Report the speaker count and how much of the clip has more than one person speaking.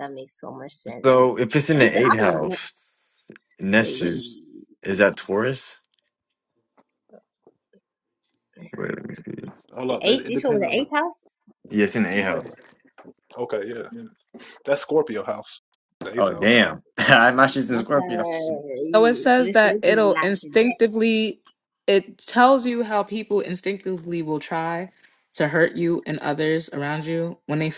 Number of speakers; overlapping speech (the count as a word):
four, about 19%